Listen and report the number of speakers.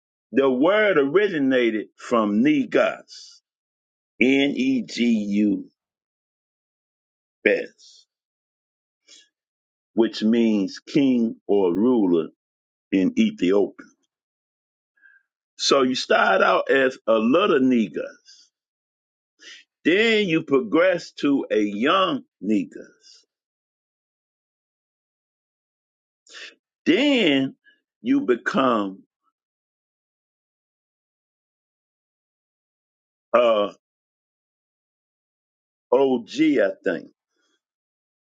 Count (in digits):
1